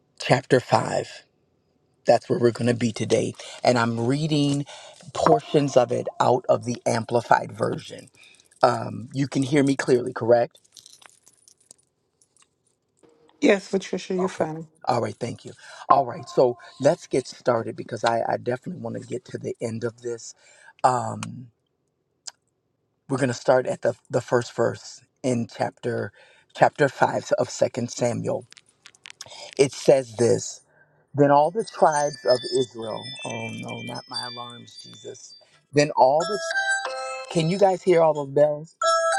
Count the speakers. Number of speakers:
2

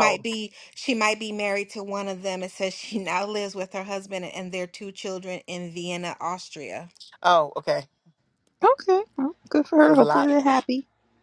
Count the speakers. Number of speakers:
3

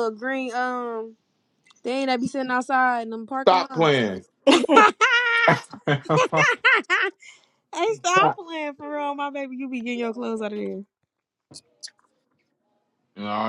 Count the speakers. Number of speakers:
2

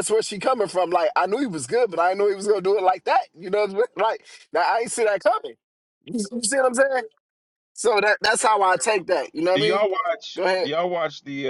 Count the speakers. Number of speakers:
2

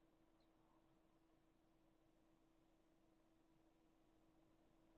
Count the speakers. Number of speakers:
0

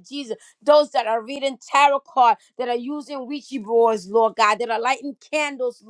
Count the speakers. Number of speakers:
1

